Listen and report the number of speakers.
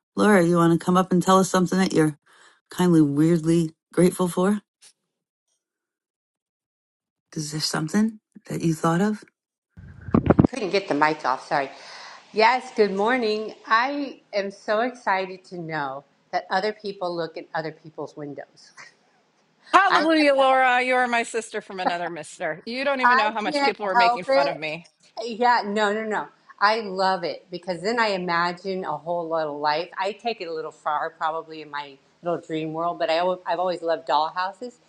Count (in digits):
3